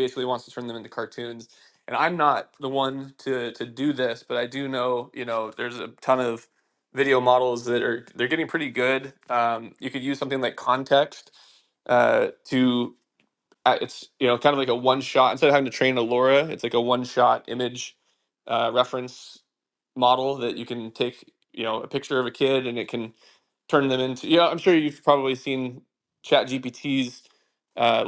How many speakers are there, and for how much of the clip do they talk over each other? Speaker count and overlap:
1, no overlap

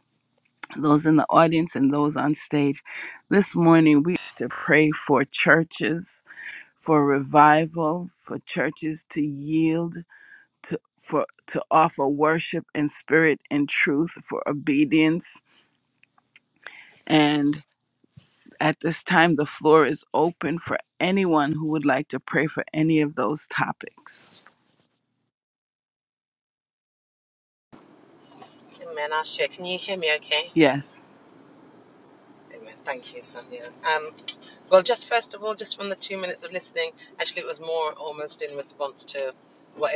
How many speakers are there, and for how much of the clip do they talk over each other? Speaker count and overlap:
2, no overlap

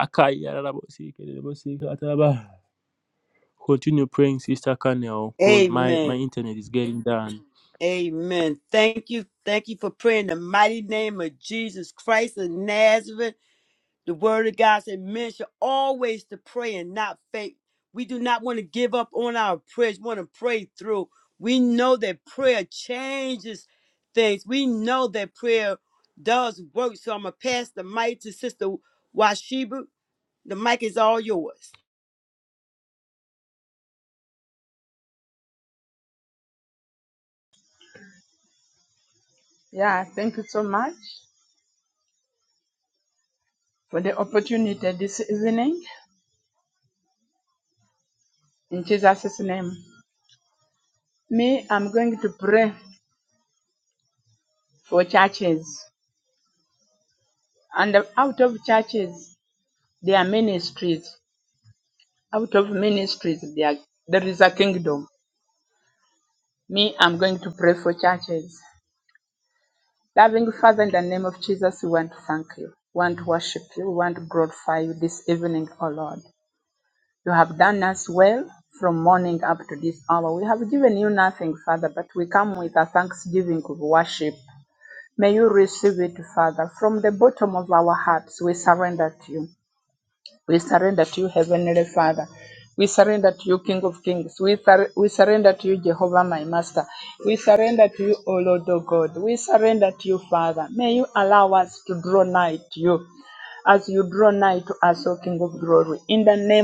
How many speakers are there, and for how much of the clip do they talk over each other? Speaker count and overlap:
3, about 1%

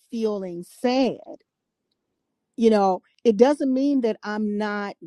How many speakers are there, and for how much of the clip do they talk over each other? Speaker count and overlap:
1, no overlap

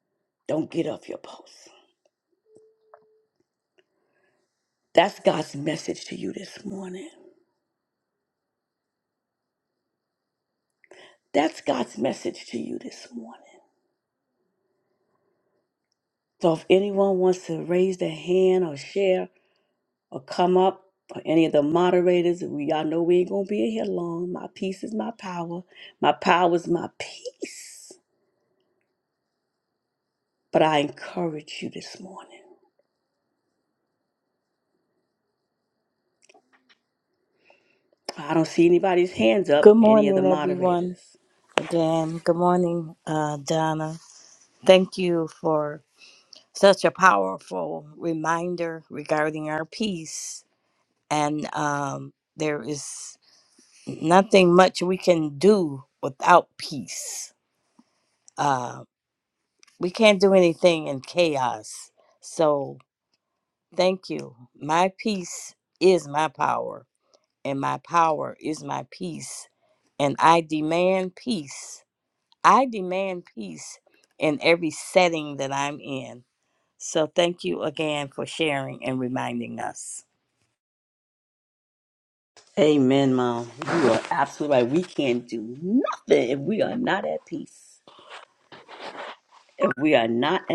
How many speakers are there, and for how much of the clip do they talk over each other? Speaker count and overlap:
2, about 1%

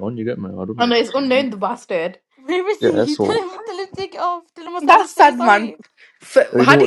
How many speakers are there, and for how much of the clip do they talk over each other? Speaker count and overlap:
3, about 38%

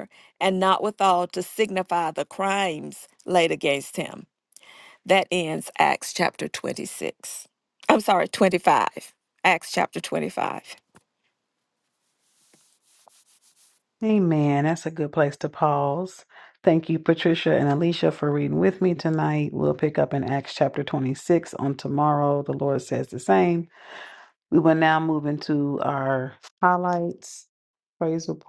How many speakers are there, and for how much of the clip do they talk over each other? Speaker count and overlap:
2, no overlap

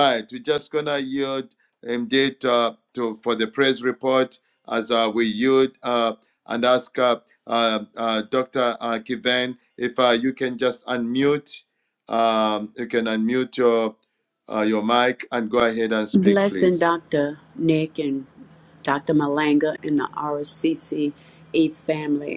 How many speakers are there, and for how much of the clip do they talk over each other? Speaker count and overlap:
2, about 3%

